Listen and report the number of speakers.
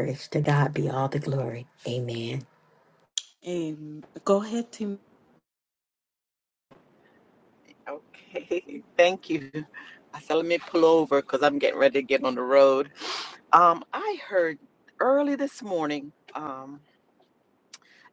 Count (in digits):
3